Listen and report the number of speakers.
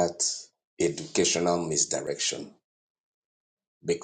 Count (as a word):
one